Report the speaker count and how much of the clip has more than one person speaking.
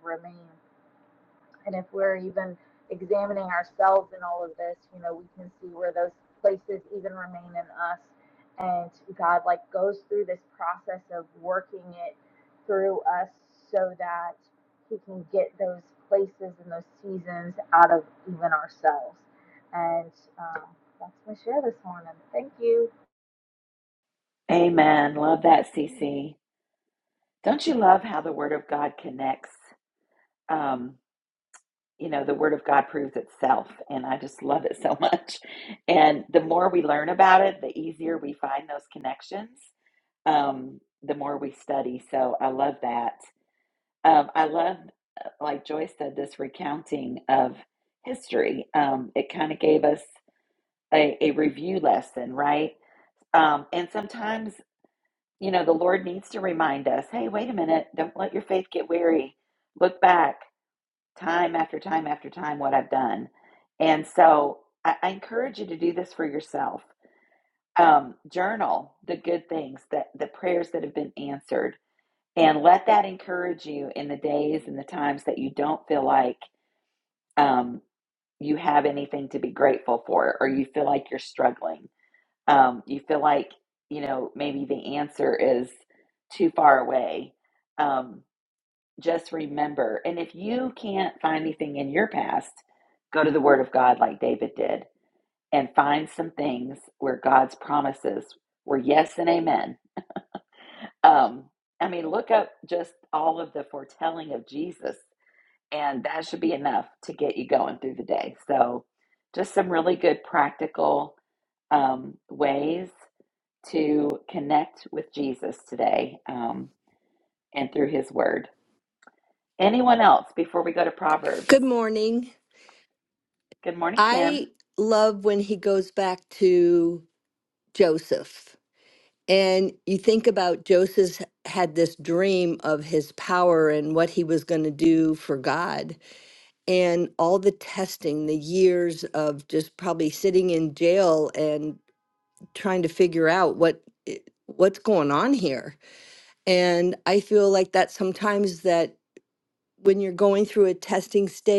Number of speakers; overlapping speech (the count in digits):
3, under 1%